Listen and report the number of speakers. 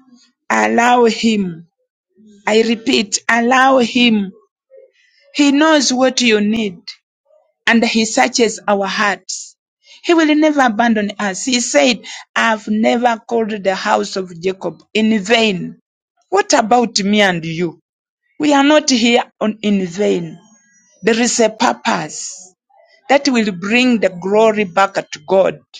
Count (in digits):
1